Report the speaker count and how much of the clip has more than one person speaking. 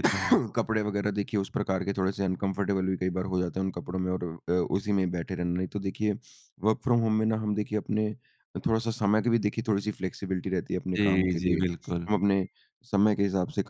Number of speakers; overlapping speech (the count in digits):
2, about 5%